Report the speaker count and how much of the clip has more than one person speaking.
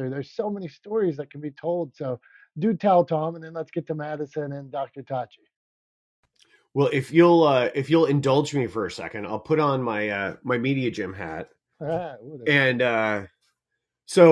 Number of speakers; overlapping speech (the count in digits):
2, about 3%